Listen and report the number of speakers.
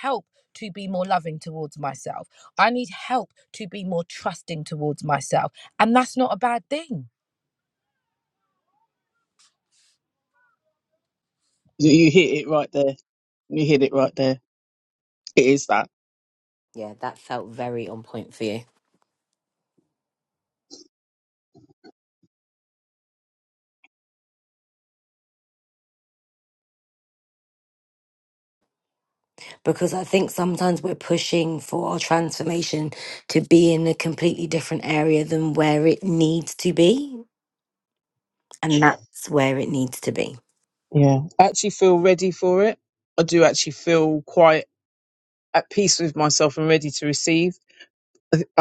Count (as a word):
three